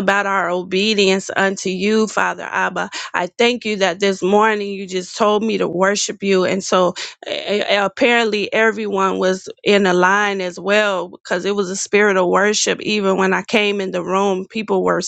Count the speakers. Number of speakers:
1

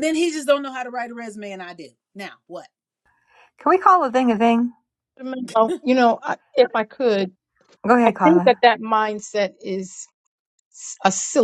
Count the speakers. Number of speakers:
3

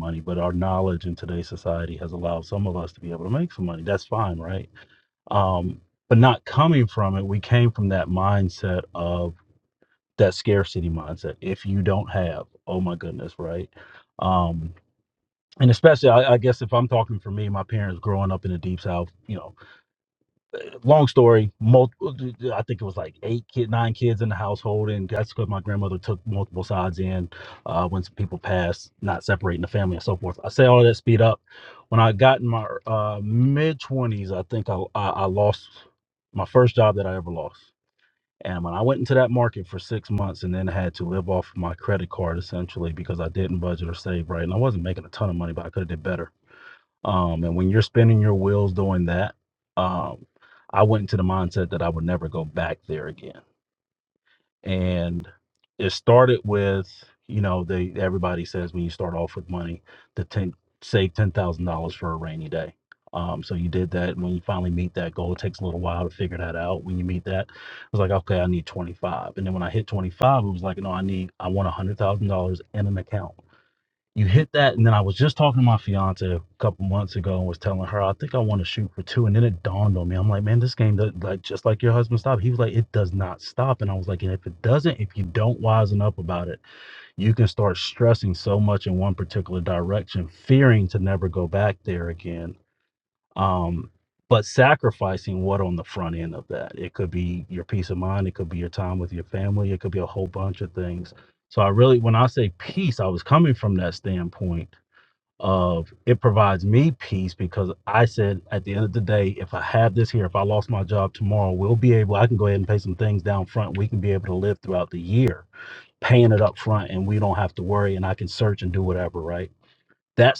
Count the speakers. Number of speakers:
1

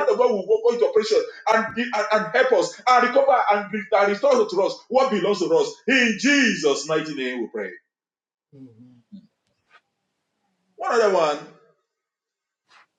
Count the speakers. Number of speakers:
1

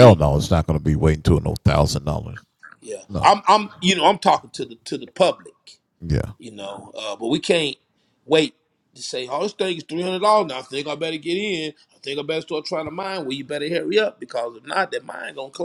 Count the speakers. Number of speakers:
2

